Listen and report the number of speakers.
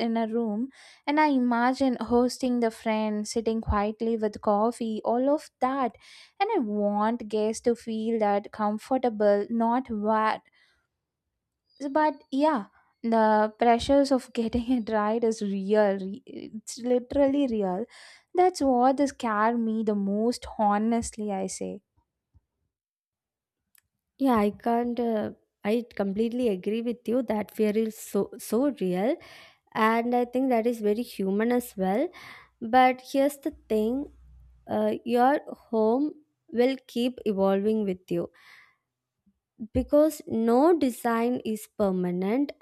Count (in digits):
2